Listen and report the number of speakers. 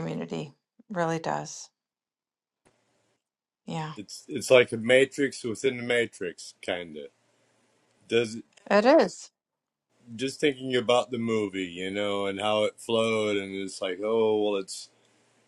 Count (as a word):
two